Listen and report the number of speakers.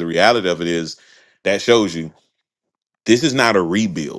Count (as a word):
one